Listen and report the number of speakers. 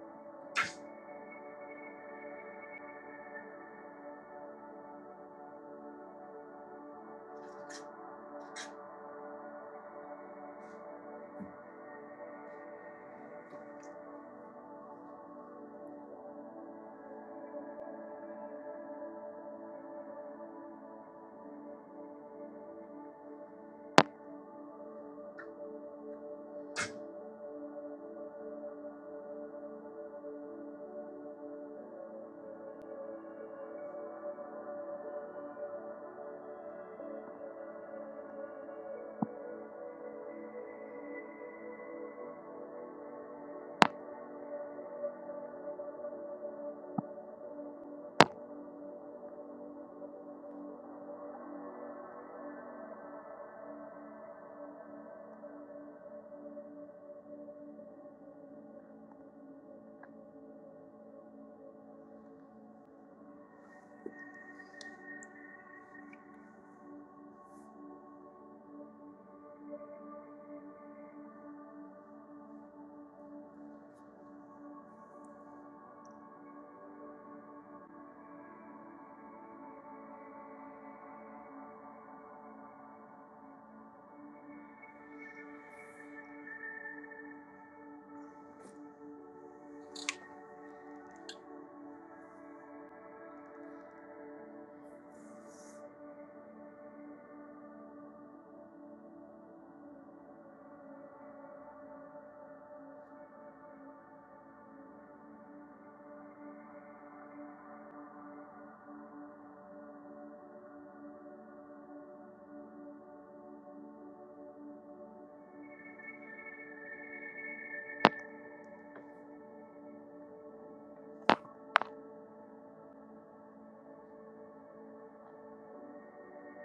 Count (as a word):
zero